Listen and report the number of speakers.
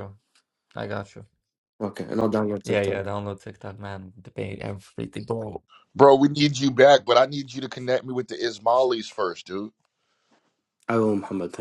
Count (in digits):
3